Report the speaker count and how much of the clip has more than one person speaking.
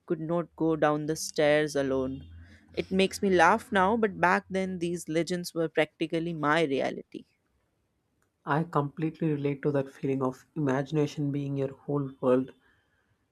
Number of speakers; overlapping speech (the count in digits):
2, no overlap